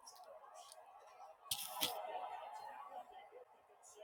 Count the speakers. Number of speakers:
zero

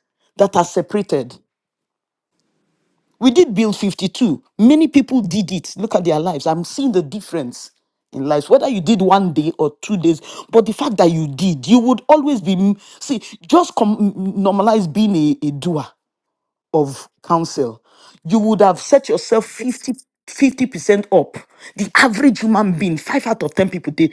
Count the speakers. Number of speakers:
one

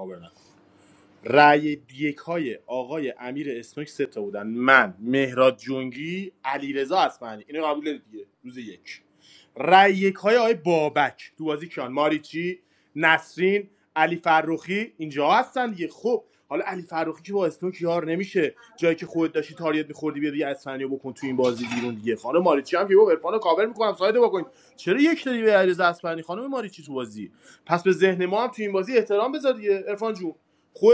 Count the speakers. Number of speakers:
one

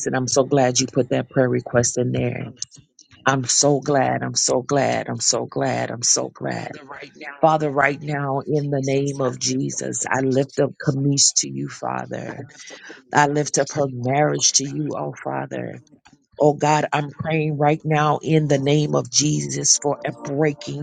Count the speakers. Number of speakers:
one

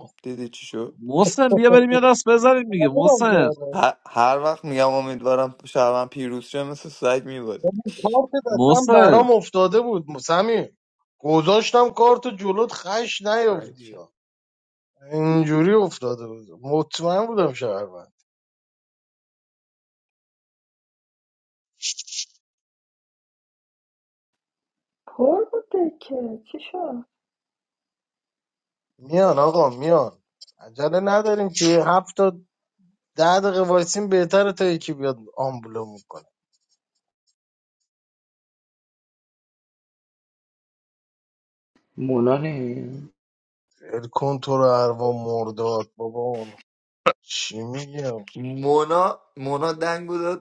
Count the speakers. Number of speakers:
five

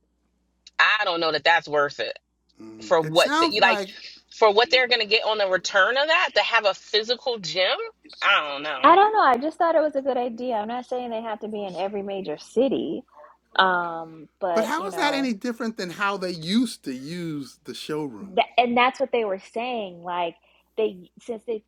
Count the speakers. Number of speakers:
three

